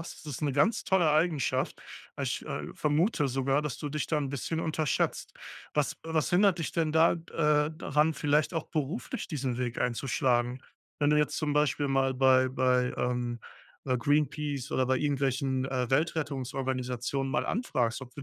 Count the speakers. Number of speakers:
1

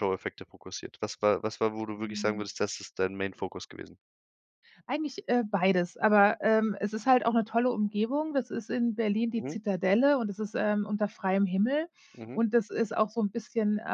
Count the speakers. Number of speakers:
2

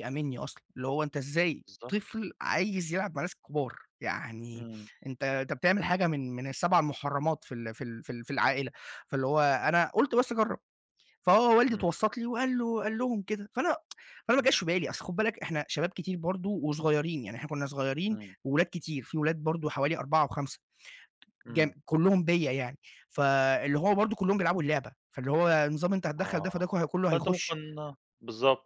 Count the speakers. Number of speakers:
2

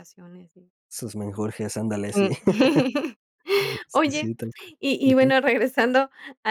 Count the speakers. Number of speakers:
2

